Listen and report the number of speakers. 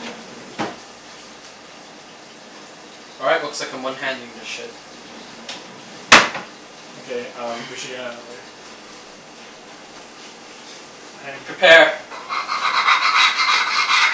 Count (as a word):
two